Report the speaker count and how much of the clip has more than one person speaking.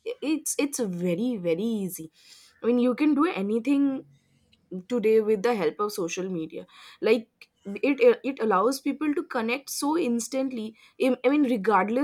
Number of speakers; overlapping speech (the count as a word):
one, no overlap